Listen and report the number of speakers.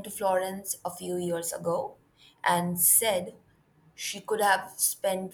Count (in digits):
1